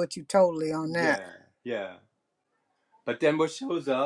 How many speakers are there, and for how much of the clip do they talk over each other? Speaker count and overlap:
two, about 7%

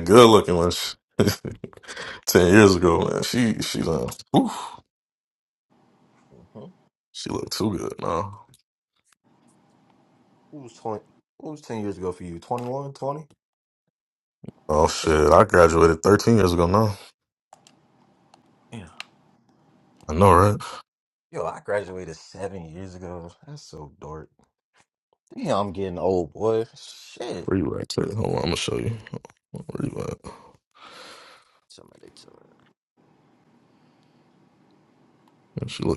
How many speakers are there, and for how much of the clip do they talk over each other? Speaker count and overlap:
two, under 1%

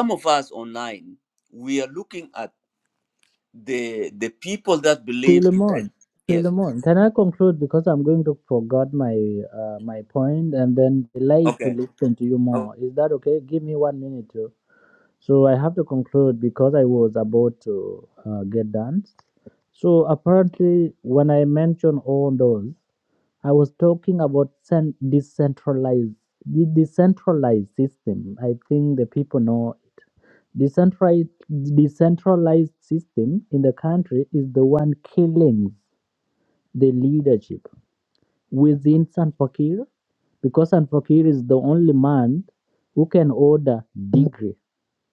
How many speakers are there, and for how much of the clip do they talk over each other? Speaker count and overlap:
two, about 3%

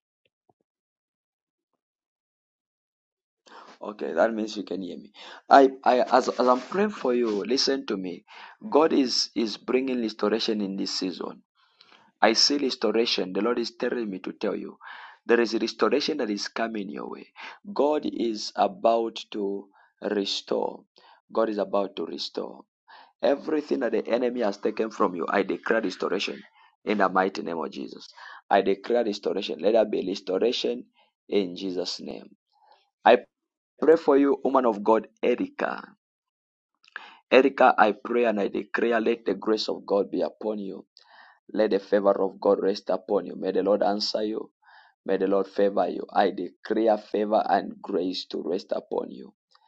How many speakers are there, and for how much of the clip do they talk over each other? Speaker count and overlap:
one, no overlap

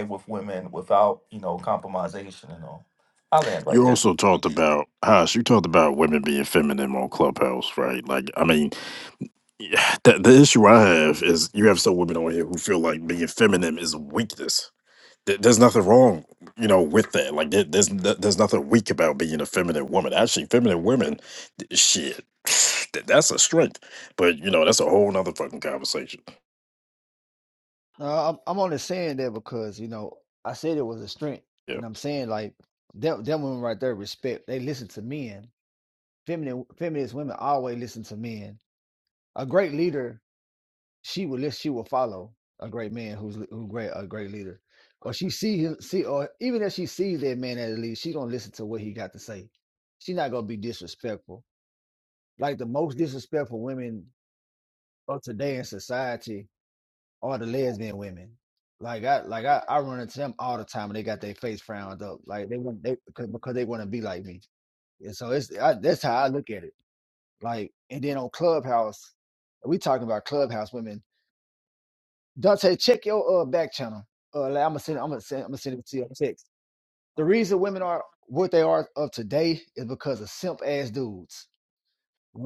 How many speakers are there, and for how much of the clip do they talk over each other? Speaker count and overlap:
three, under 1%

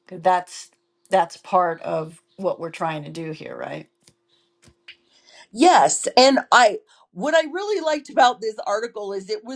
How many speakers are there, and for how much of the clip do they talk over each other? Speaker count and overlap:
two, no overlap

